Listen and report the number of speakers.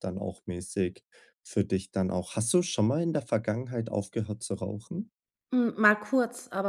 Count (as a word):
two